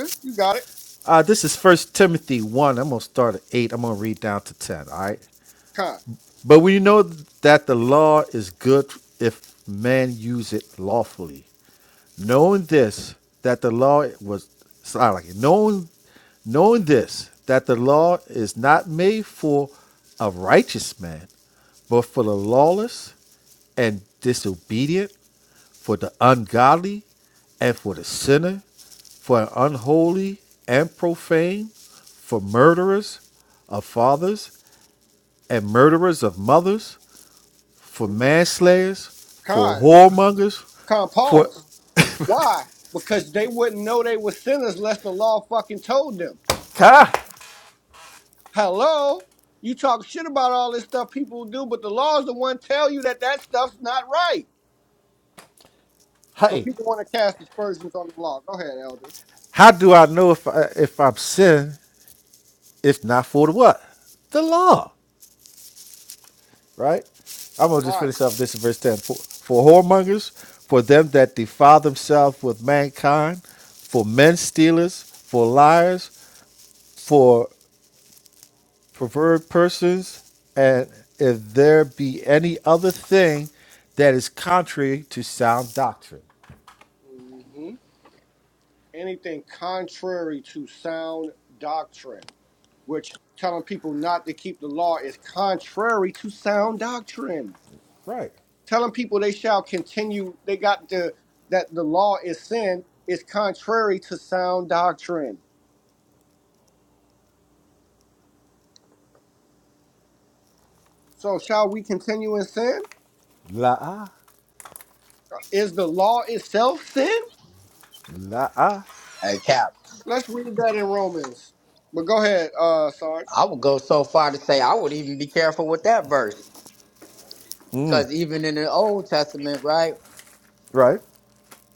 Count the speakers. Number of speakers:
3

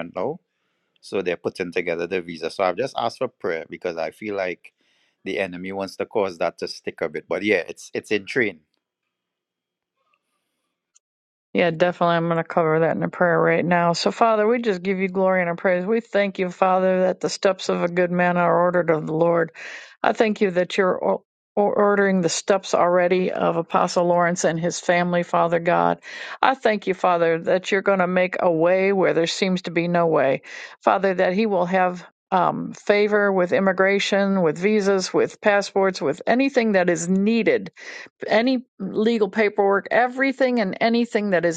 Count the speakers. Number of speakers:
2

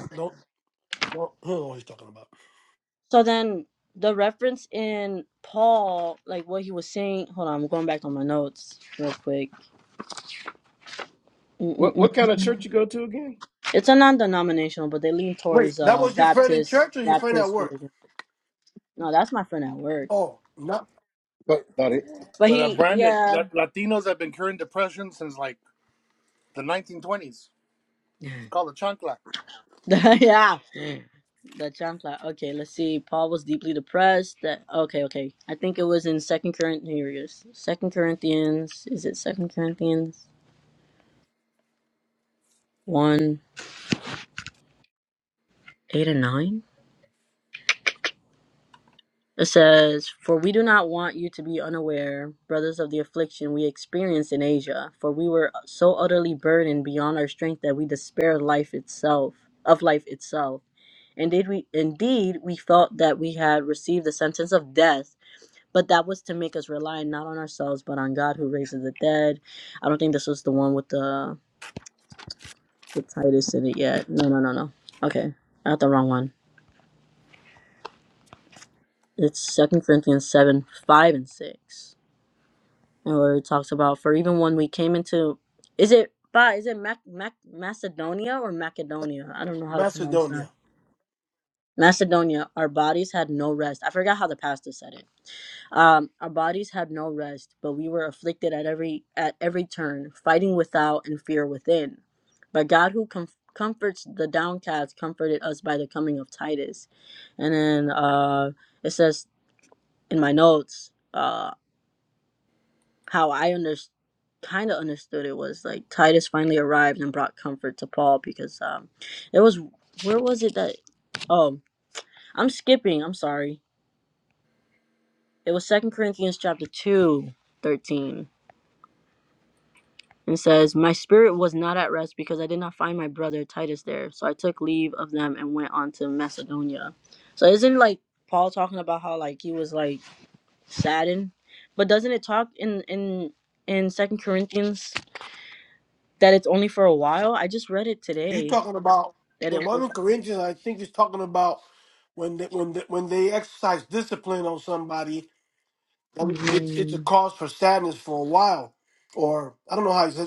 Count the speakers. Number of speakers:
4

